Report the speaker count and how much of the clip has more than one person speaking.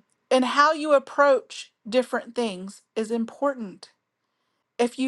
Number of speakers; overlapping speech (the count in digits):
1, no overlap